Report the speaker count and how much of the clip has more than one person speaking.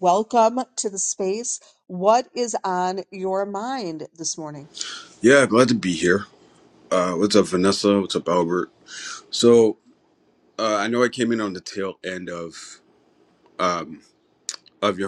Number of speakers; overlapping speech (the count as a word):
two, no overlap